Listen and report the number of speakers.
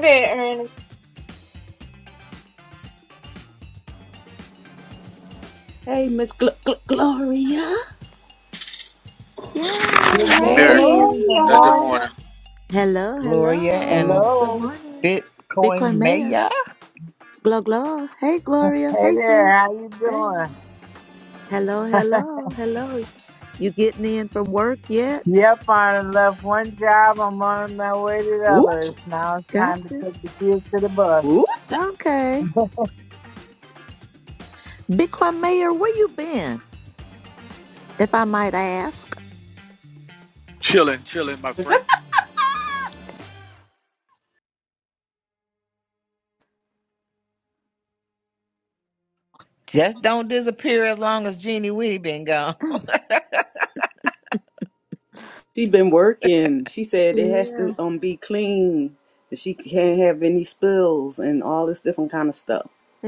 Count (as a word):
six